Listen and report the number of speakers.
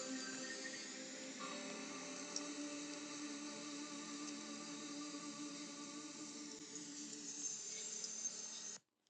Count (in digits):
0